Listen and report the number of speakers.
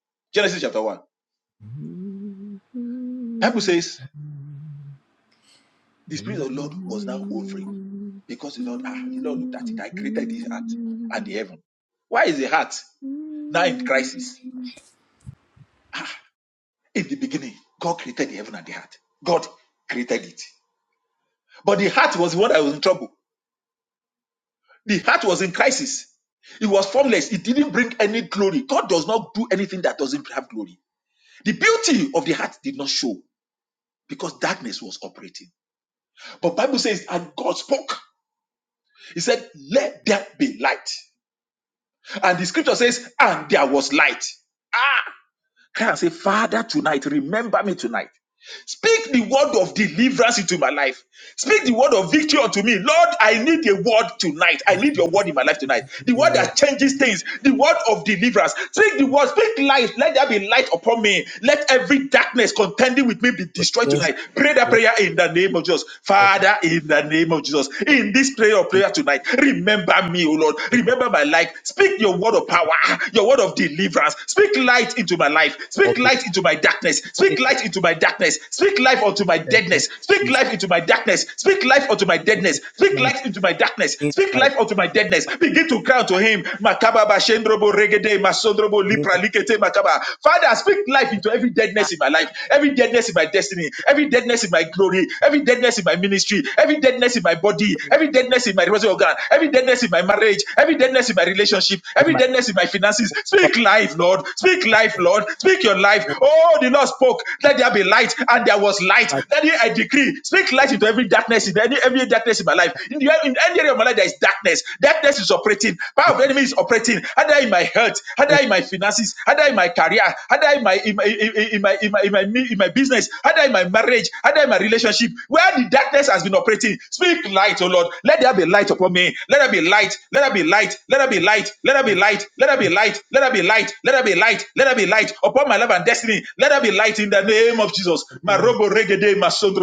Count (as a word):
two